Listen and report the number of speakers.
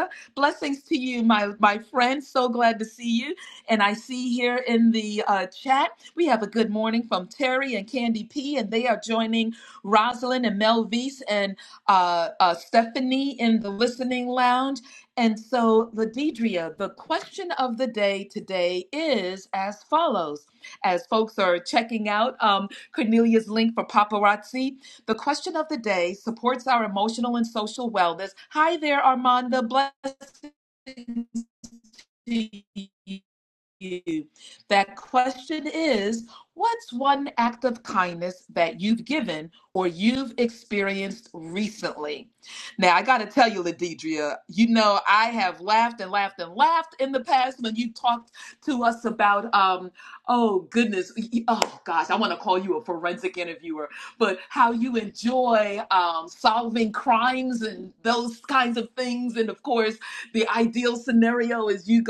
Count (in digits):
1